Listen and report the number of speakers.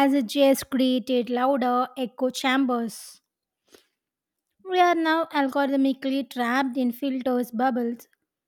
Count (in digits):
1